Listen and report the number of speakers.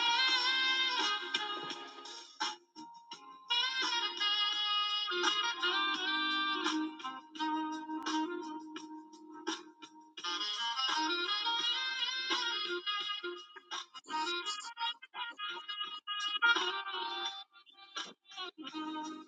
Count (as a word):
zero